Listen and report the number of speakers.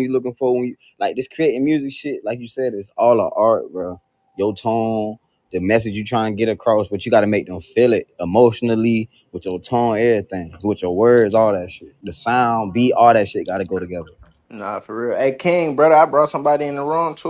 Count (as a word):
two